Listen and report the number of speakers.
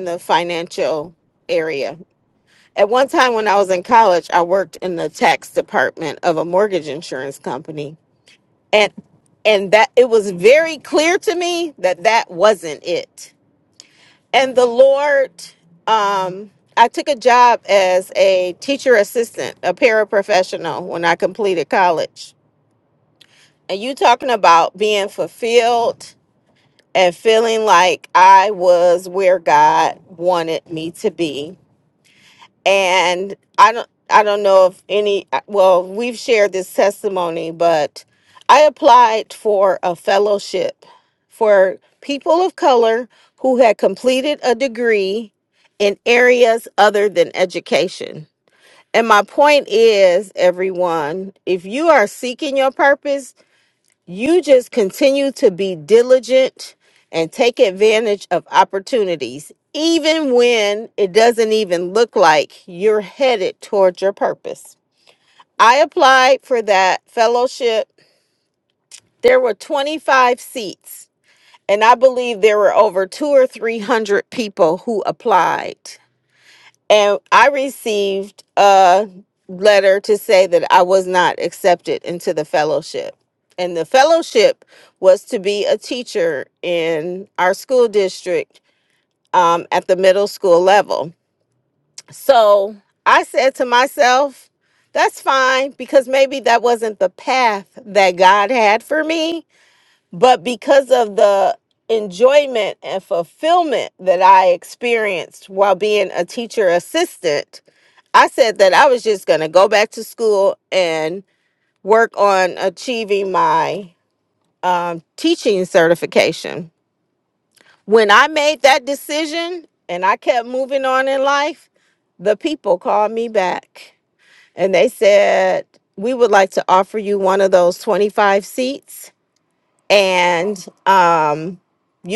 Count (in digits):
1